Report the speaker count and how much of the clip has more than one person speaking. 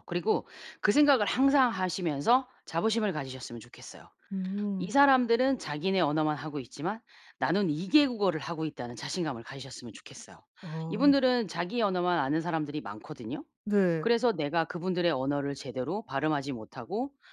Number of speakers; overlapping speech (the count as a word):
two, about 1%